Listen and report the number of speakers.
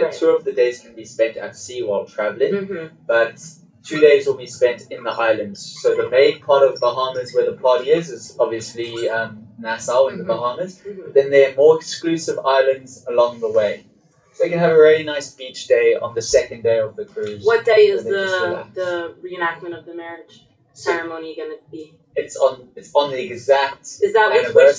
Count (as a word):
two